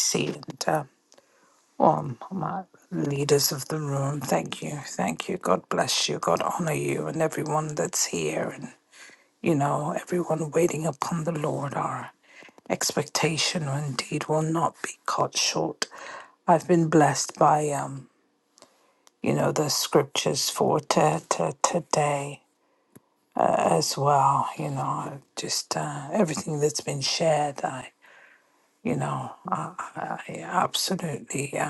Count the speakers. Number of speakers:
1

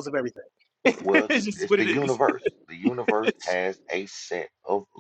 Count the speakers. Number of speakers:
2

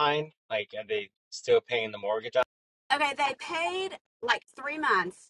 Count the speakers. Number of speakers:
2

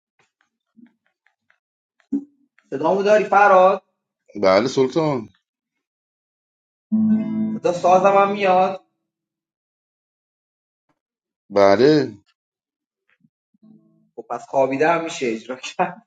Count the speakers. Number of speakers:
2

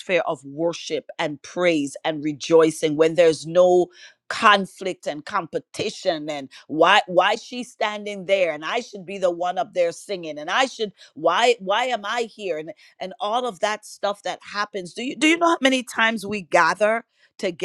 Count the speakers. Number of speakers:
1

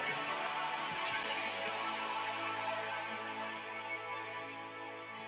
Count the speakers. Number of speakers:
0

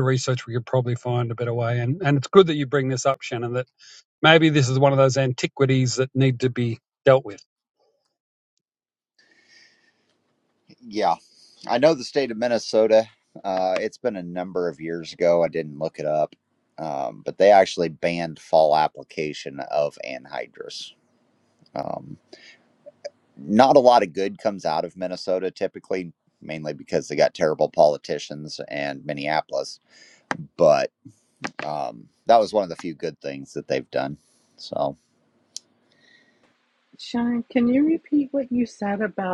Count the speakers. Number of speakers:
3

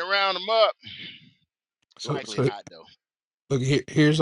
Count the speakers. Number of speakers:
2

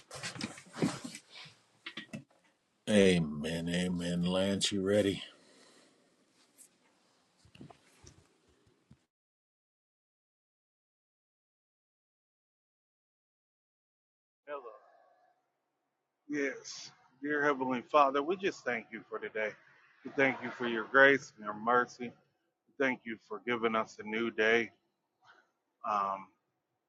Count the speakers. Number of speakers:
2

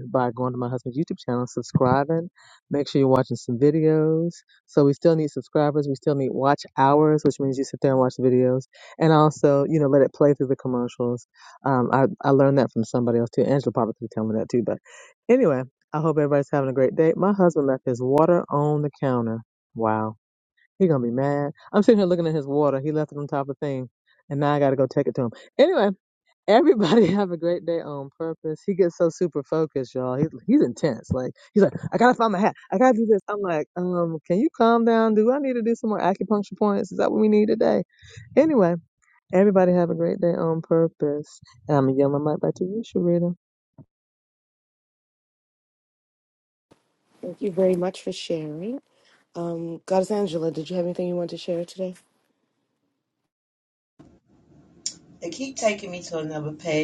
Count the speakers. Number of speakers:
3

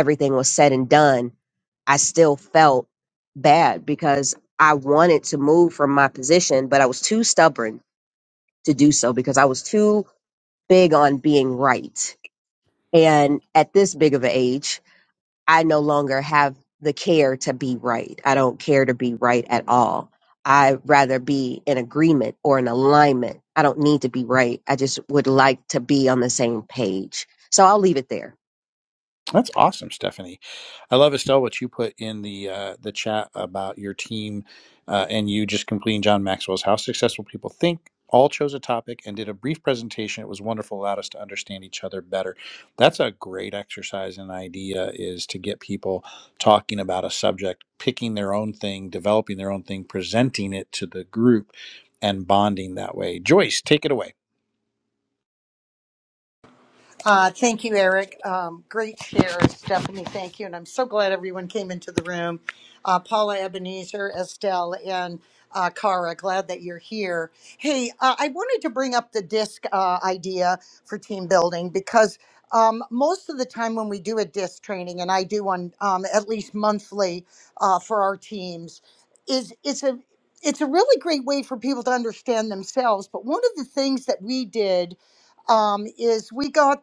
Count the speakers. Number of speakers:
3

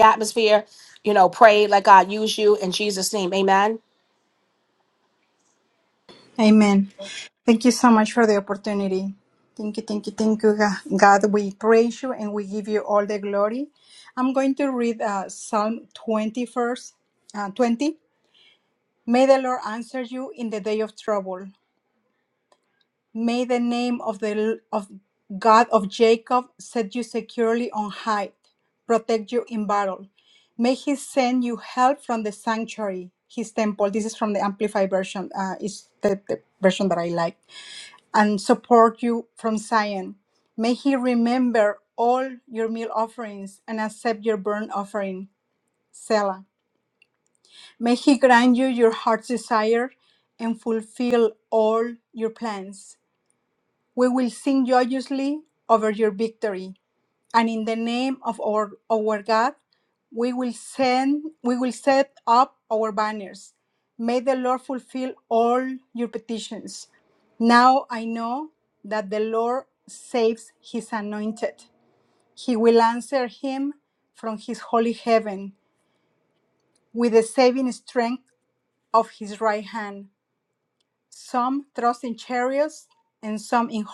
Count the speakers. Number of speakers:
2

